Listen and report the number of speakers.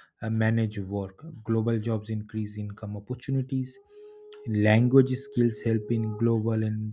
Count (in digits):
1